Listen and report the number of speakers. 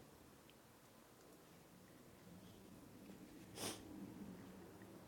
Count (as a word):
zero